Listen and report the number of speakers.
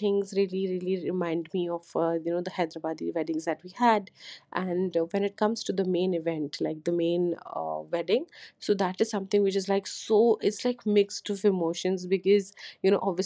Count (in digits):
1